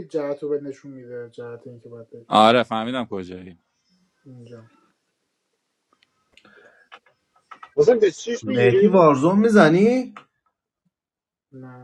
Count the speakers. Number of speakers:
4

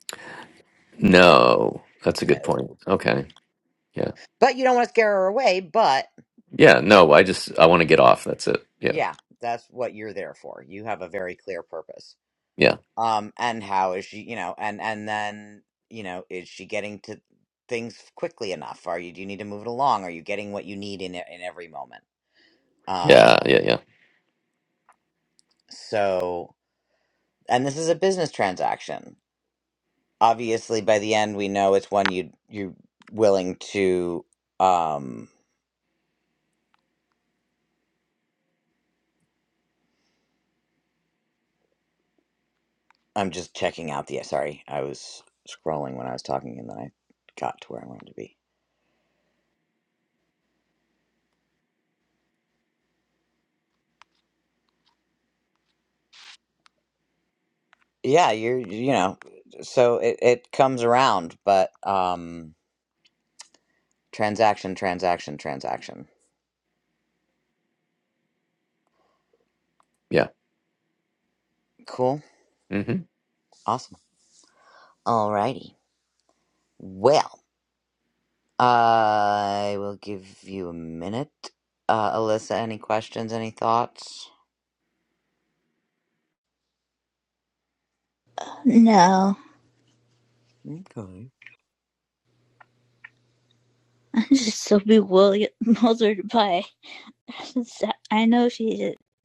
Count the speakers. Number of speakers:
3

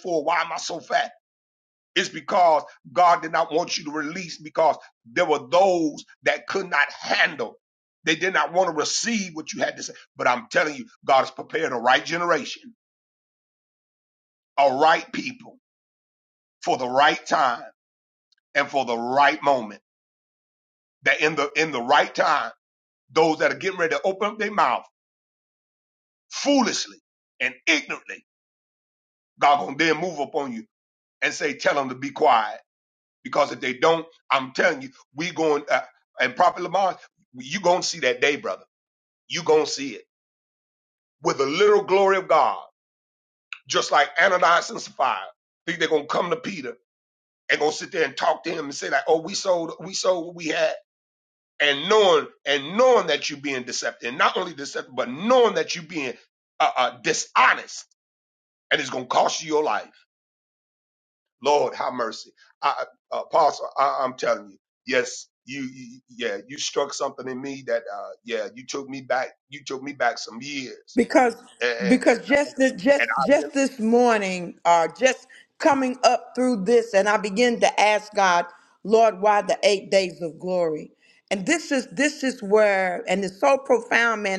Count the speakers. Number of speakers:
2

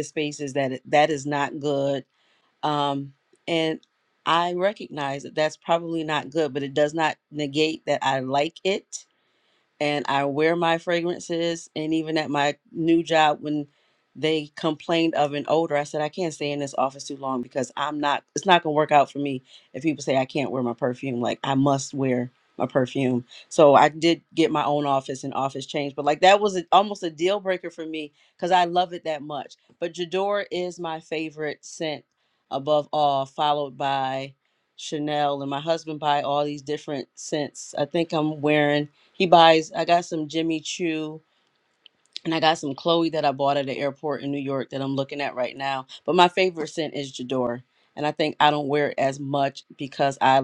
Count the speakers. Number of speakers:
1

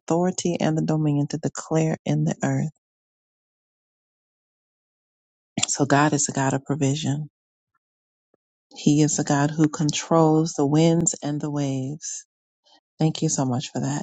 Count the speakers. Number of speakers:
1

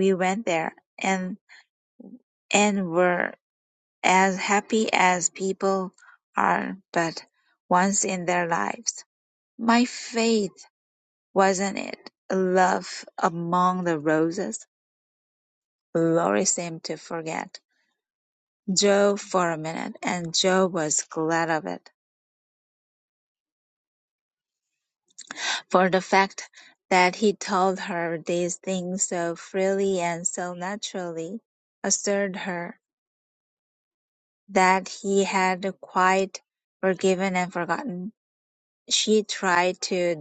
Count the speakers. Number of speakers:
1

